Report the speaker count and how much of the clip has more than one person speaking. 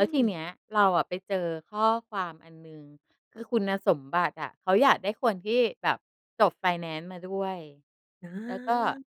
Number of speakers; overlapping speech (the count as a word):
two, about 6%